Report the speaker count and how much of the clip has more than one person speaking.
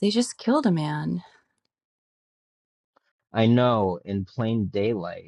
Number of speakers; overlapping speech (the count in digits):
2, no overlap